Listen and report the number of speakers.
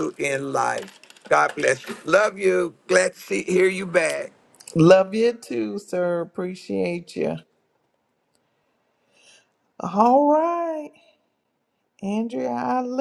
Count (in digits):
2